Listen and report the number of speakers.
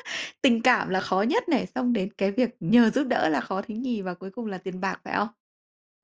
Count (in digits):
1